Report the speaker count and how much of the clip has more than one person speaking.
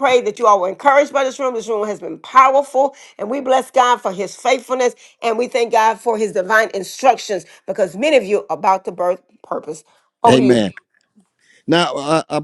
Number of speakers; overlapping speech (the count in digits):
2, about 3%